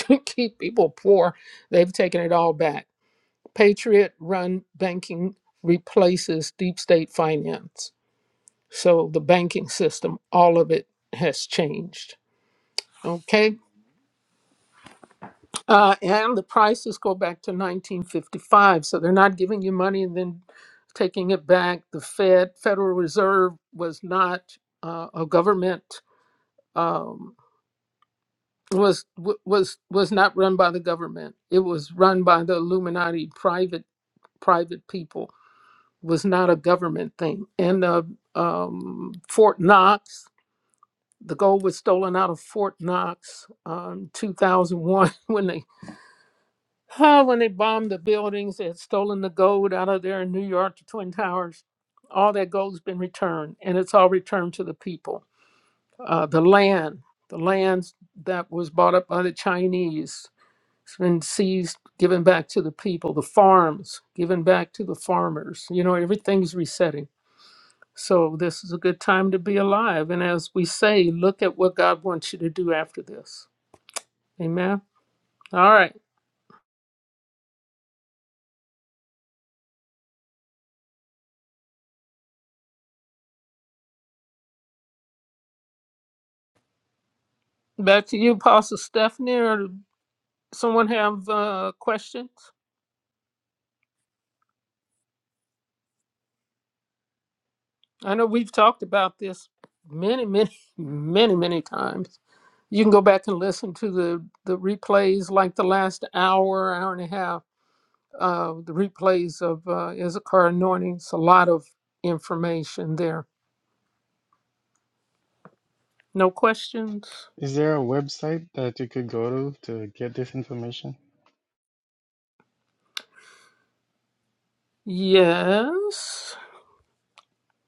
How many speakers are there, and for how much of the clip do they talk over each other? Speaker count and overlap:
2, no overlap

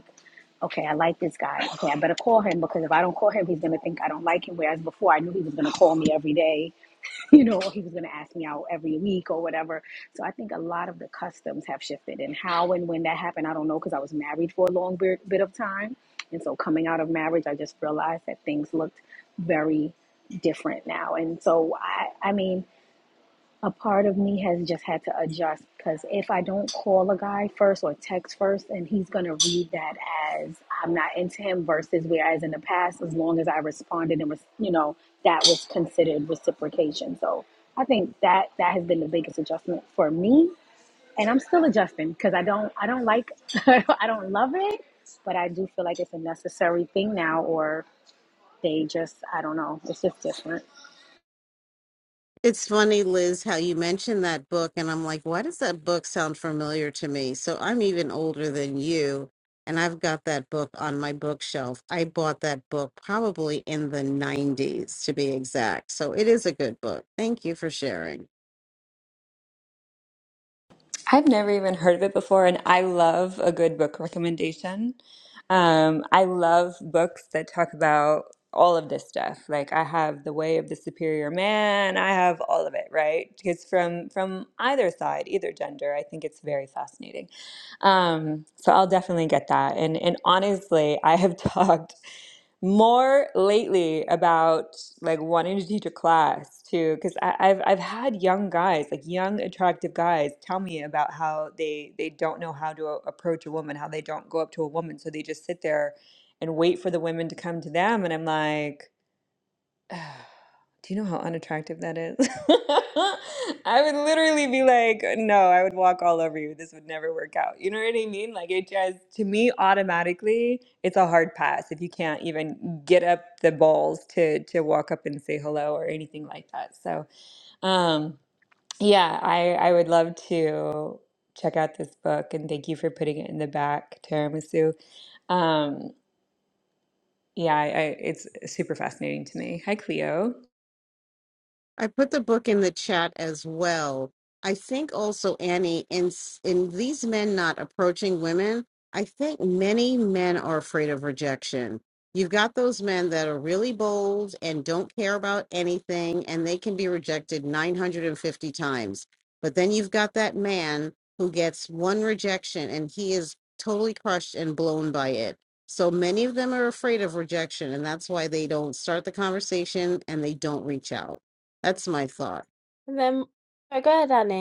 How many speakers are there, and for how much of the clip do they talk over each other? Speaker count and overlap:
4, no overlap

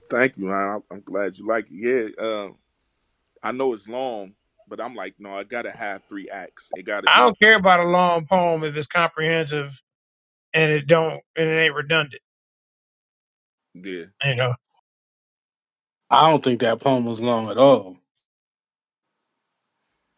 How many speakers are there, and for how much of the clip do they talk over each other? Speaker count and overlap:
3, about 1%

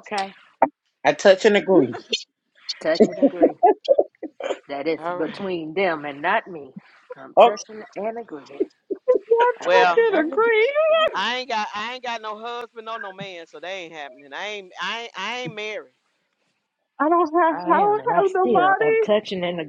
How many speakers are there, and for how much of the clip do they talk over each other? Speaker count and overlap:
4, about 19%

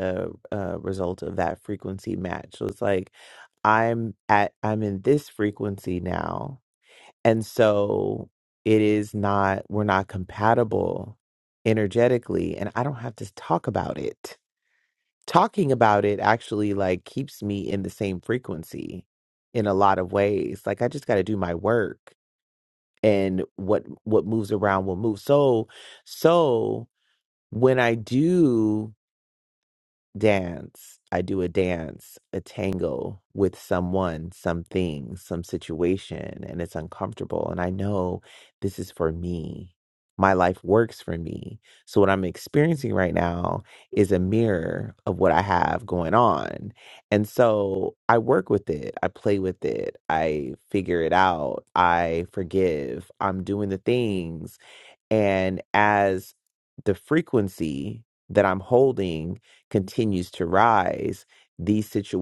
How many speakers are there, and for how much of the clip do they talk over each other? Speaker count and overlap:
1, no overlap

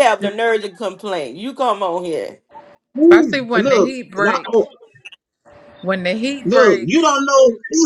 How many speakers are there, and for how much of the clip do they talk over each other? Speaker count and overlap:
3, about 27%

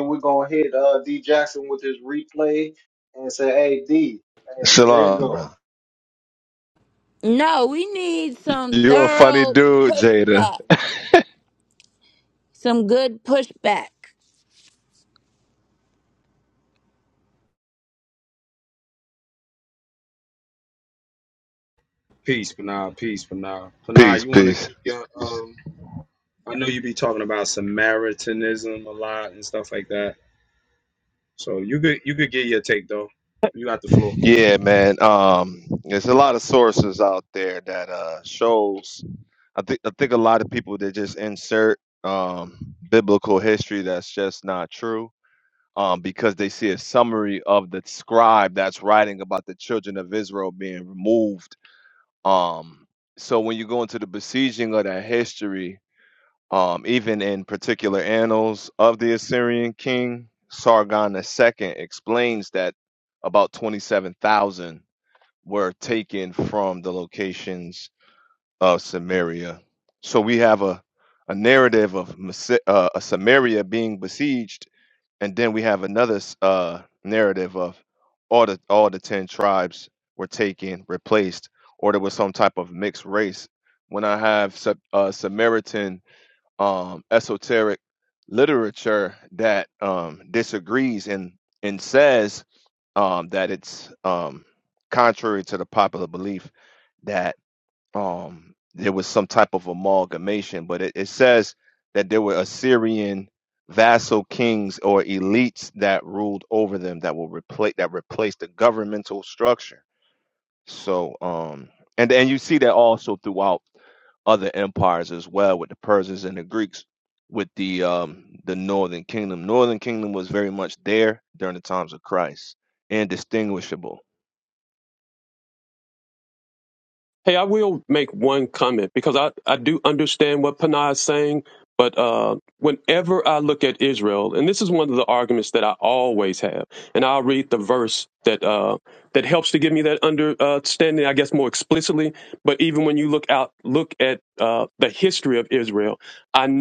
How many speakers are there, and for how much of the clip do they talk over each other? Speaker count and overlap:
5, about 2%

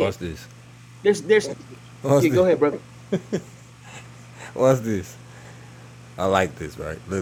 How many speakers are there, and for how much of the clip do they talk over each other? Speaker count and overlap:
2, about 5%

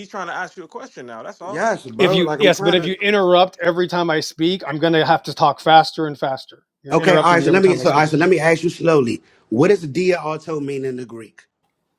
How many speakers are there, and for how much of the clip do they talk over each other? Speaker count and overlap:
3, about 20%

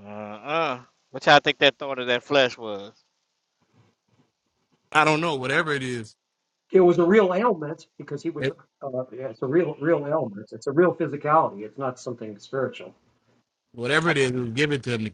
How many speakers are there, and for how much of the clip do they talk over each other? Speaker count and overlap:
3, about 2%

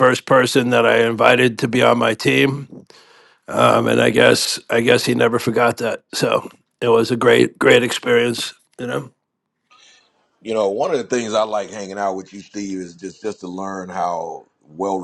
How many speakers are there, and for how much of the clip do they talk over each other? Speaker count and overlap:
2, no overlap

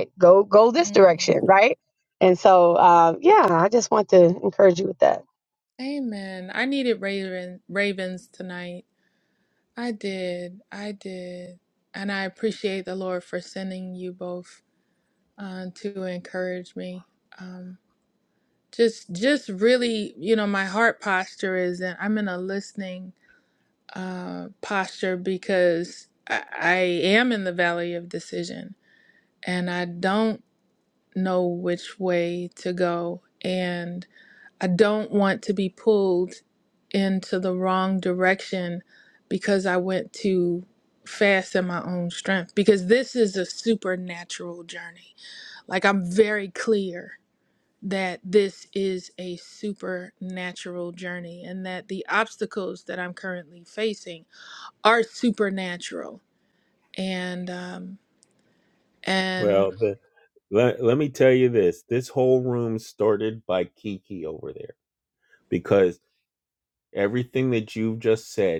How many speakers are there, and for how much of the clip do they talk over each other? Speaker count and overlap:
3, about 1%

